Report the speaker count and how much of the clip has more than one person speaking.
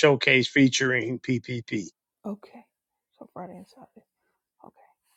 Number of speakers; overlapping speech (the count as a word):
two, no overlap